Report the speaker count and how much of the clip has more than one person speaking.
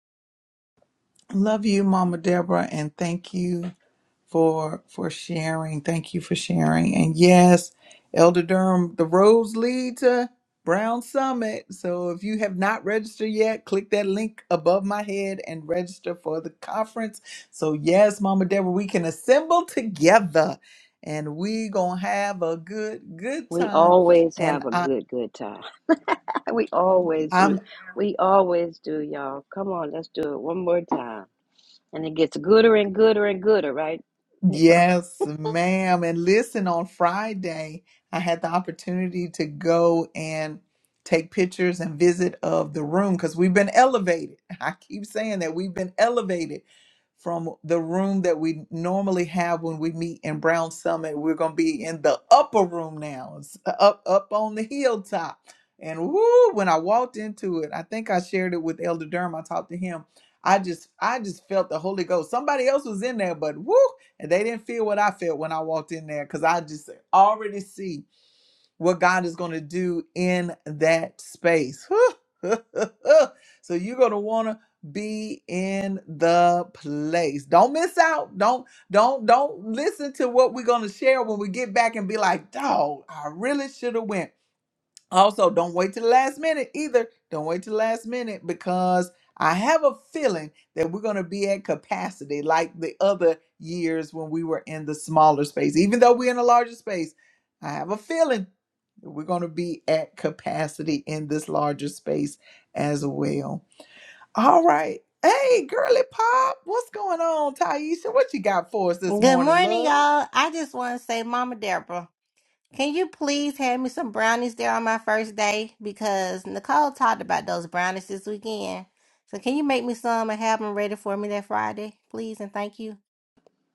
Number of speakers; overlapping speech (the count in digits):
3, about 2%